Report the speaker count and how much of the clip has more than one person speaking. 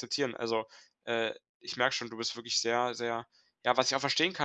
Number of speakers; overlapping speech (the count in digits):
1, no overlap